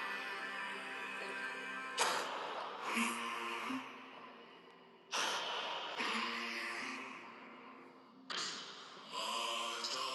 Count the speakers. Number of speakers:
zero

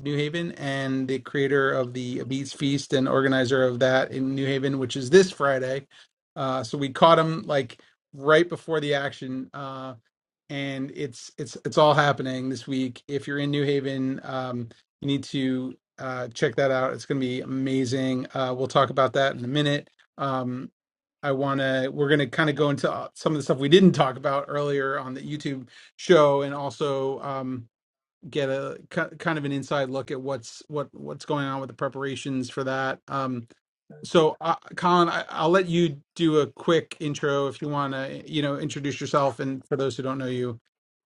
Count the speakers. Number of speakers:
one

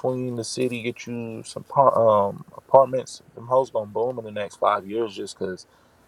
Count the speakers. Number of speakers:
one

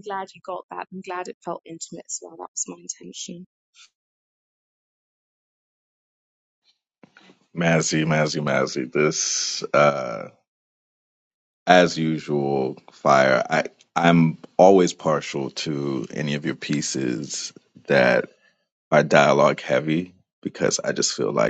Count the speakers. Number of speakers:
two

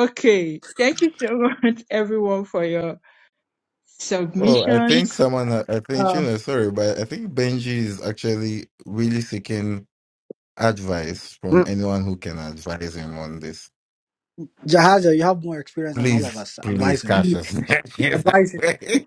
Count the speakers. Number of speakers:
three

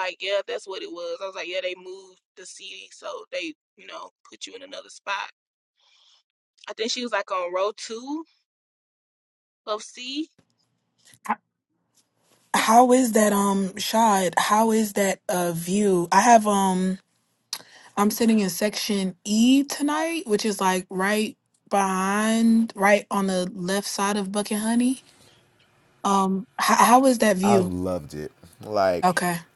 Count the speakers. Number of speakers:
three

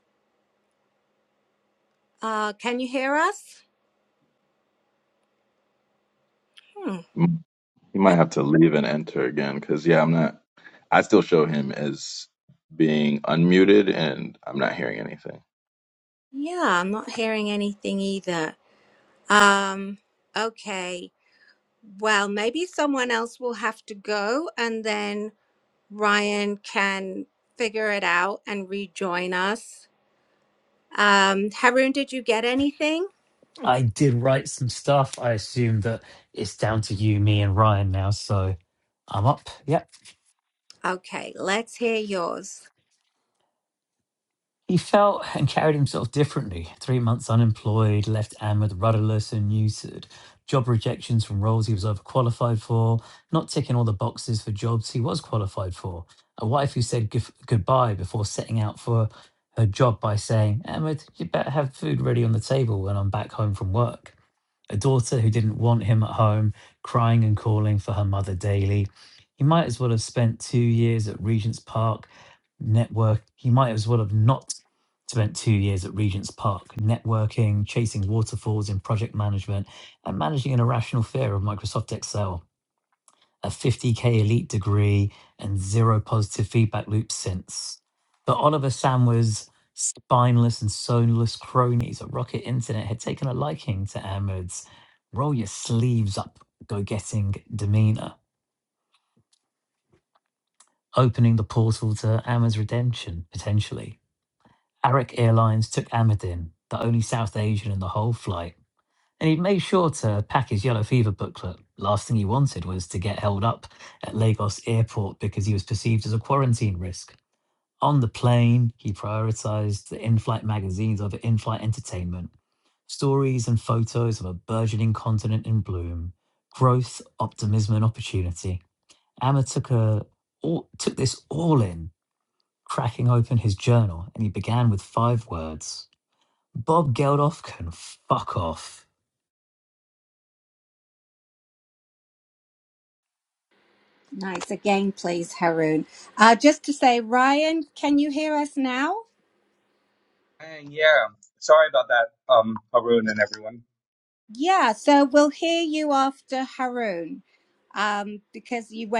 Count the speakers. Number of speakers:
four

